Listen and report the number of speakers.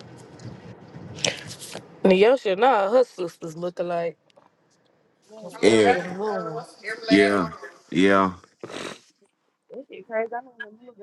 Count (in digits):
4